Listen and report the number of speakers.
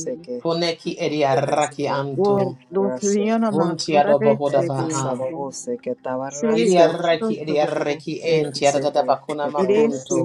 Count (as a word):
three